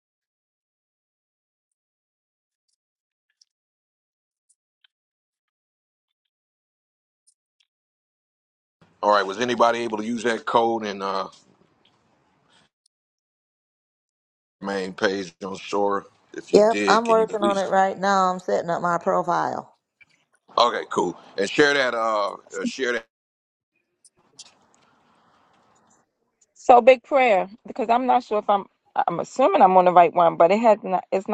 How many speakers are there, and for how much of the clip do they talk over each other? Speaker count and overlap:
three, about 4%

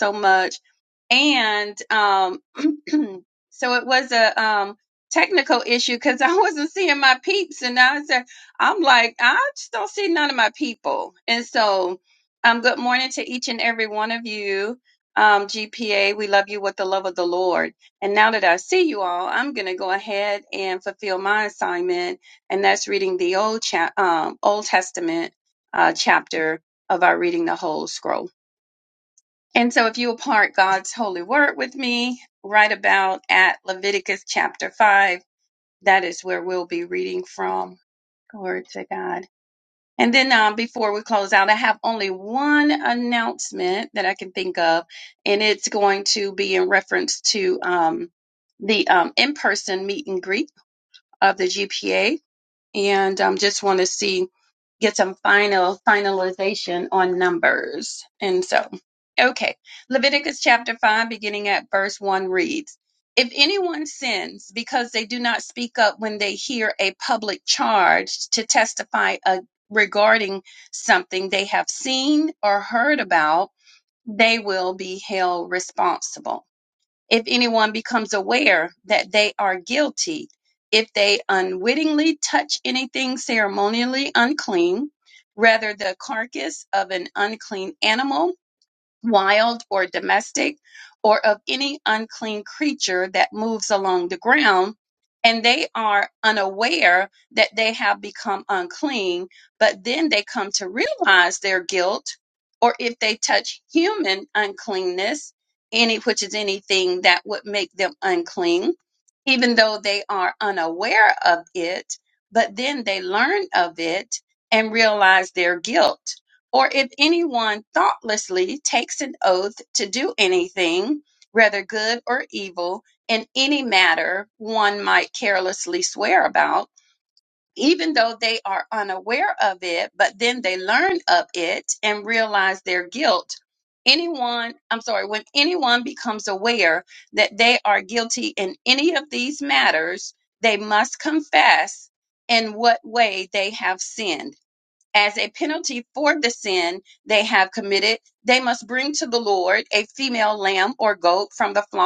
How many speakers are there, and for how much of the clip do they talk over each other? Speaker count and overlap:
one, no overlap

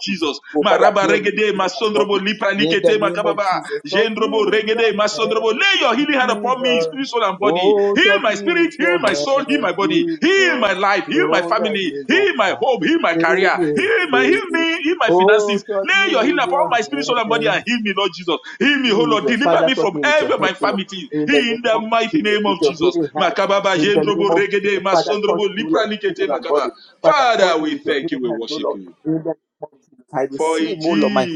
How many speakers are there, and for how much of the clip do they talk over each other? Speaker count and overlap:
two, about 75%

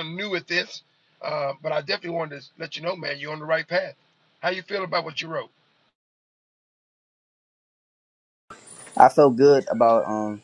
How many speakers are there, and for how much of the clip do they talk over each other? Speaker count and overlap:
two, no overlap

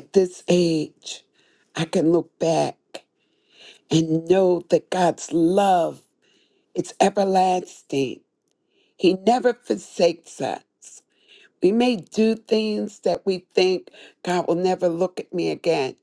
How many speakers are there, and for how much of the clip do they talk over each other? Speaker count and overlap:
one, no overlap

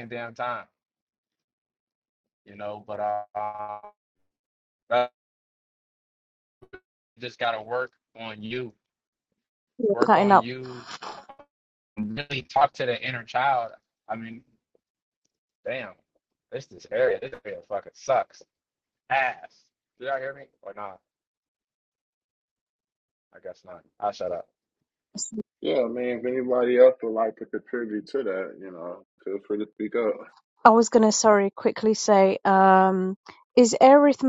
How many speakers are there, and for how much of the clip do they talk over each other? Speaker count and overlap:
three, about 1%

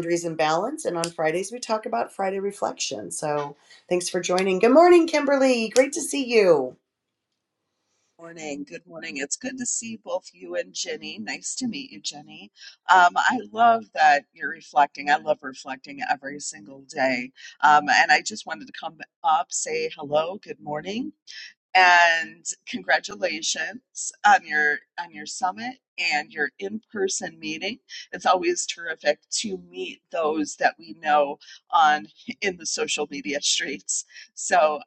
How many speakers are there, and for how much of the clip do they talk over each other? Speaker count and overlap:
two, no overlap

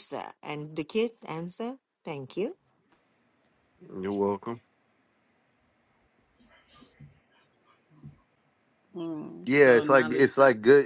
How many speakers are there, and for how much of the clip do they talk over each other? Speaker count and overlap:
three, about 7%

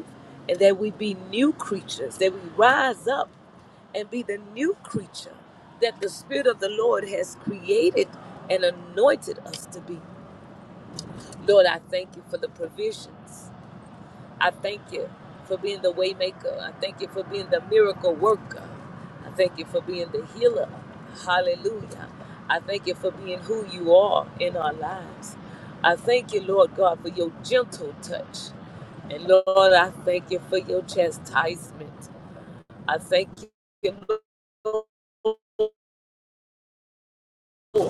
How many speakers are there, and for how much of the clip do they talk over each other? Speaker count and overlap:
one, no overlap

